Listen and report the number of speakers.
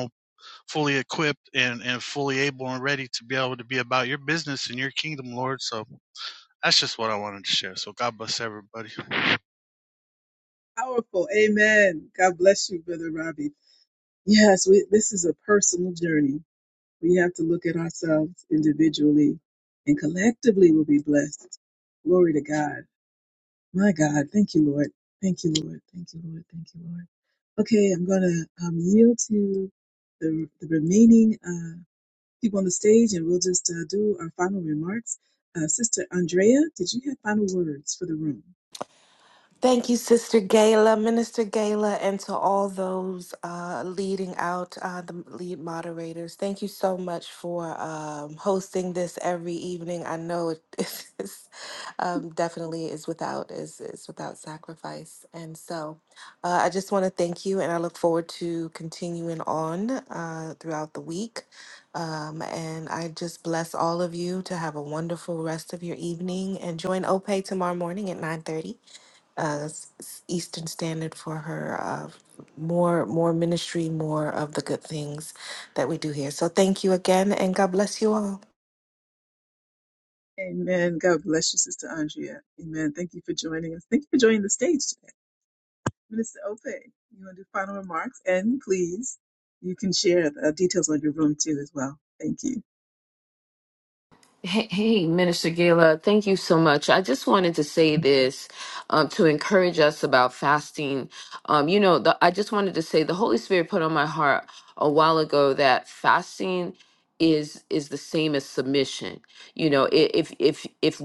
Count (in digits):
4